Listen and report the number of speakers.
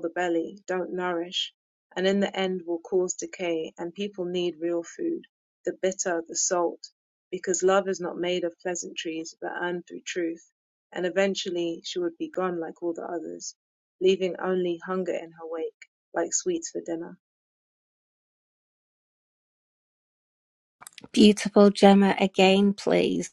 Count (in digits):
2